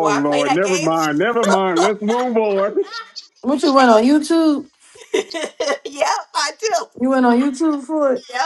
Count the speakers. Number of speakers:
3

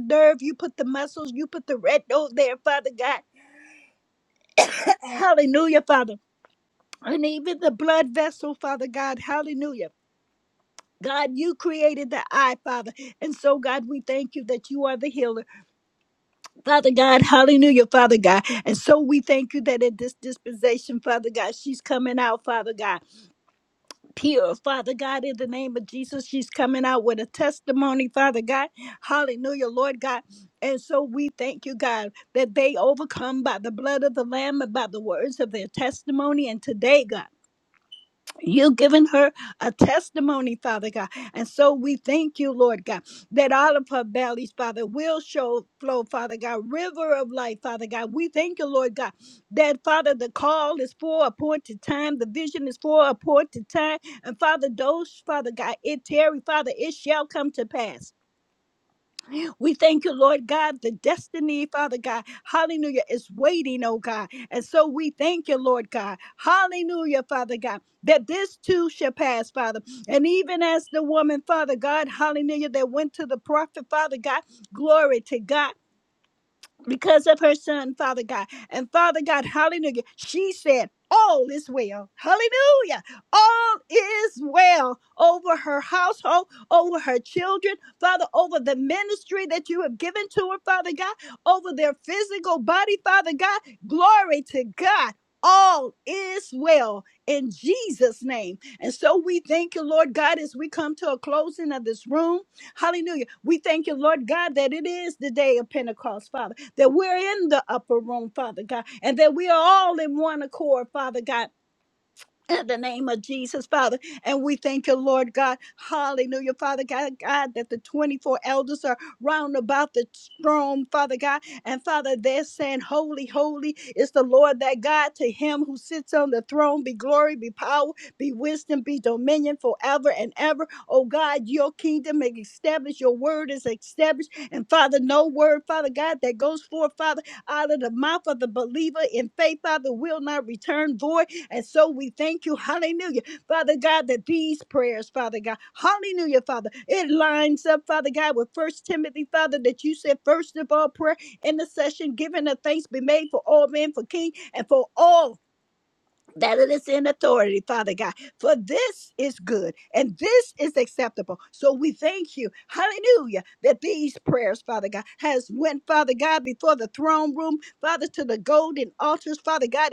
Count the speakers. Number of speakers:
1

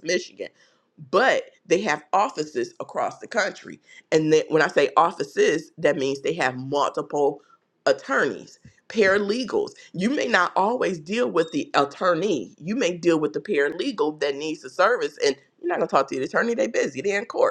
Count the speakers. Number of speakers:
1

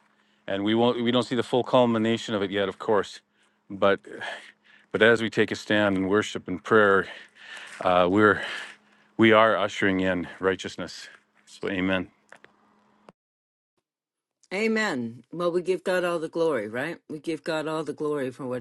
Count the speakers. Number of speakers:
2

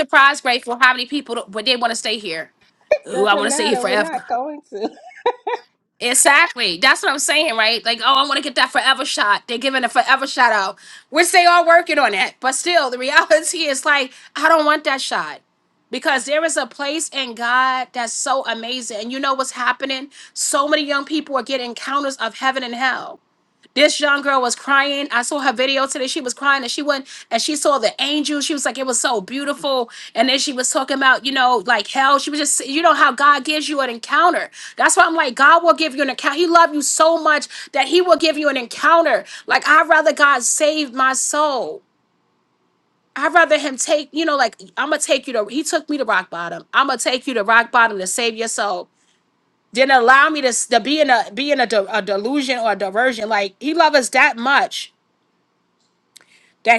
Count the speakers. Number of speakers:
2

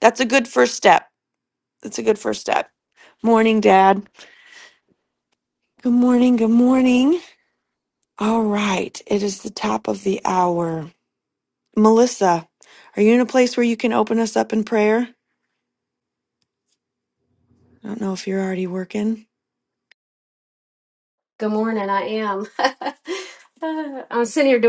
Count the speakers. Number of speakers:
2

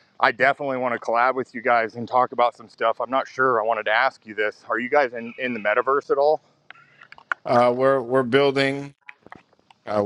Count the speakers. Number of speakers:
2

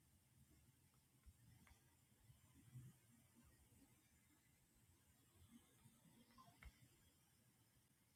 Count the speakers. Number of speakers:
0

